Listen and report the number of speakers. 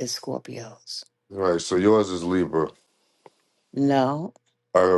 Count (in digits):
2